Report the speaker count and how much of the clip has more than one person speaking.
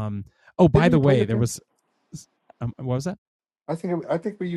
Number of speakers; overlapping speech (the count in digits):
2, about 15%